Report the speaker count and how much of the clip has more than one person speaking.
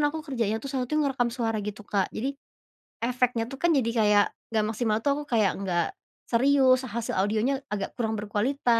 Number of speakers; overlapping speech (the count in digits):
1, no overlap